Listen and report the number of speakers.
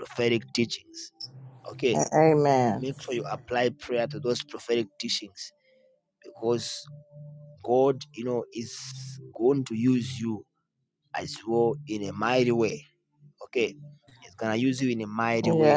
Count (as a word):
two